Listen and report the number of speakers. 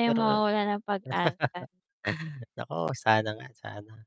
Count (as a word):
two